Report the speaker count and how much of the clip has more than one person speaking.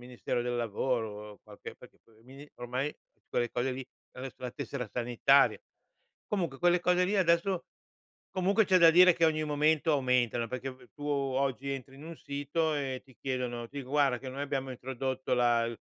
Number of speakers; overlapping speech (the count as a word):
one, no overlap